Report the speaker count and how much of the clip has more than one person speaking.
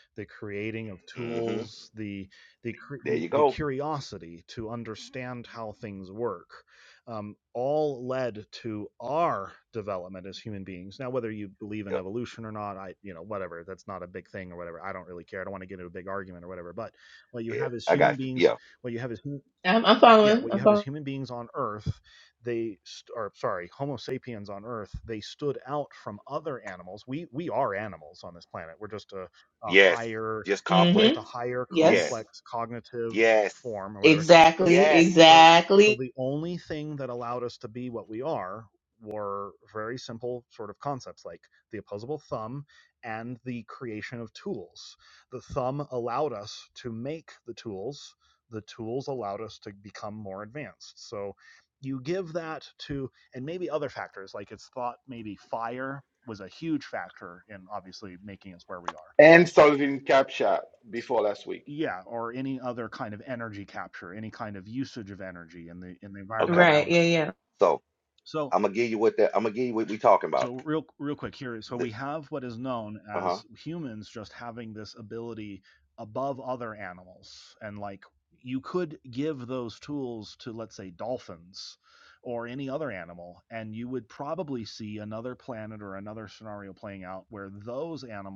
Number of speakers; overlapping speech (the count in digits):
4, about 7%